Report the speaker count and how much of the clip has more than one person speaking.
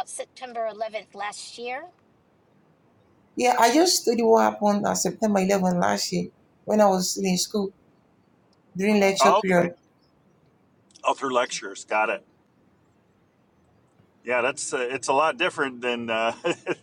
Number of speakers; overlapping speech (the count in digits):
3, about 5%